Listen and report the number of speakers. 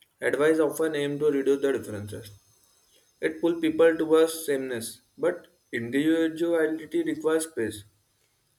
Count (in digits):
1